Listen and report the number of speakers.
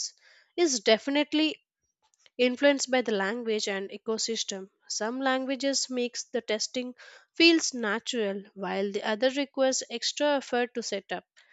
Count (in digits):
1